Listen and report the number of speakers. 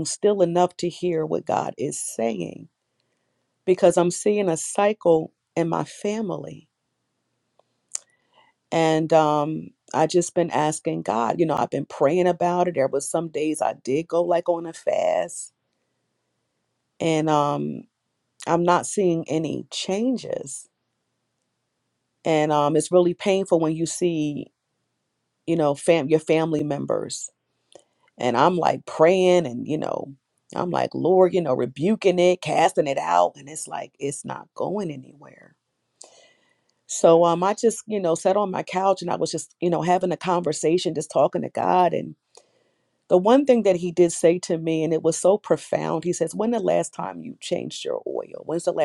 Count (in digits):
1